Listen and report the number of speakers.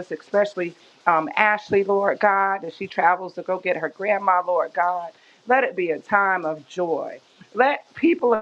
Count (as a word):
one